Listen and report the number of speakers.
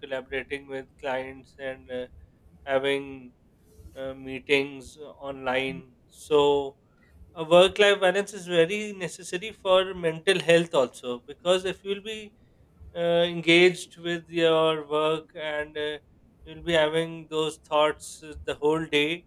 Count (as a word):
one